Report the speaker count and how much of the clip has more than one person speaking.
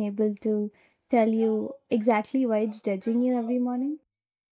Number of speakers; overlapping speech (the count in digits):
1, no overlap